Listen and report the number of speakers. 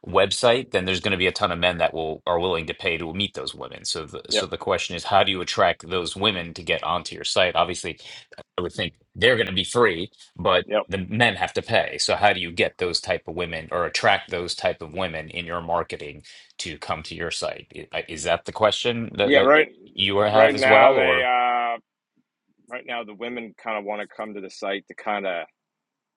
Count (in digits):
2